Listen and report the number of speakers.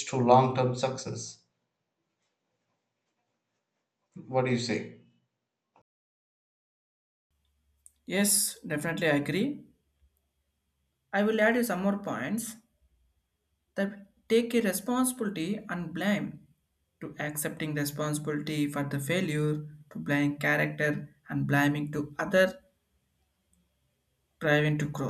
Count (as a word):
two